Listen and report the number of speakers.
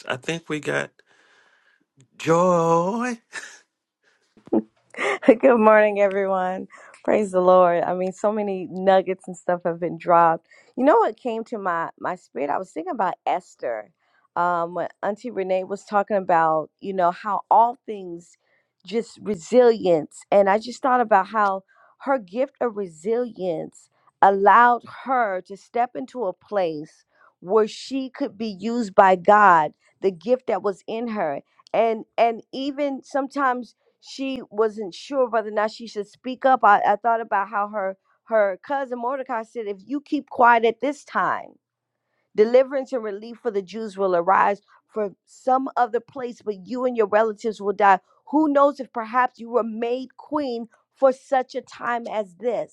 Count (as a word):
two